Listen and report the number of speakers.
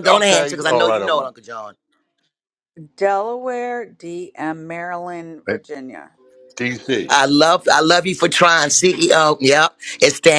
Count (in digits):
3